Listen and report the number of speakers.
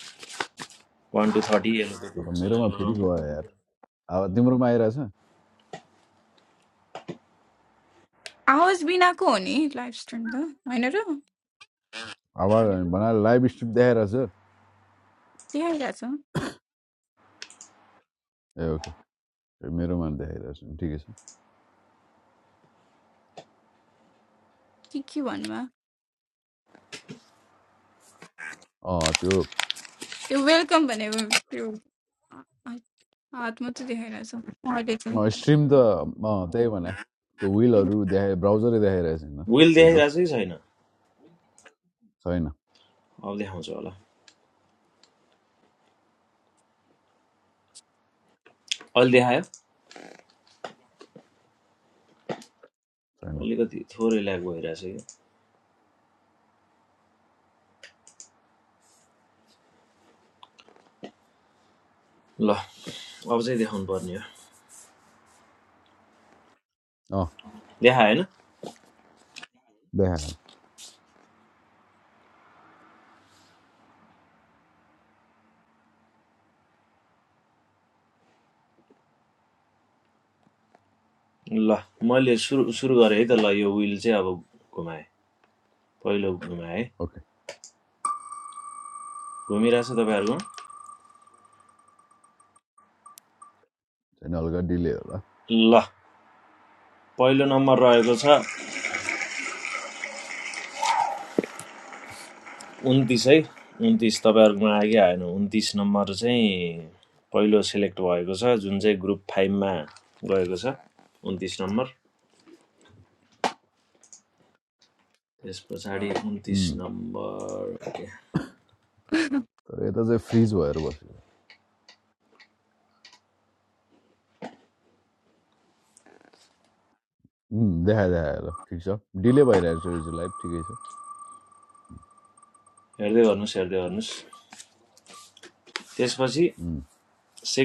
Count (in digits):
3